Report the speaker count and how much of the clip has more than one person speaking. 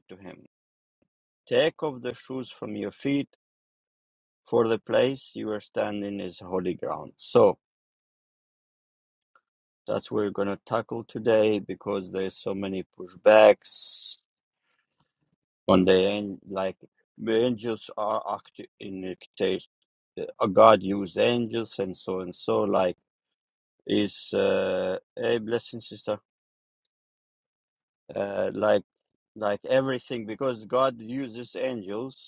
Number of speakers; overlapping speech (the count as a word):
one, no overlap